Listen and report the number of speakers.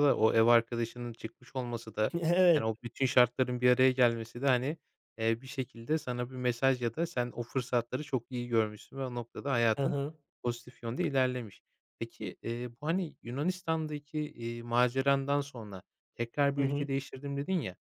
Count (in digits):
2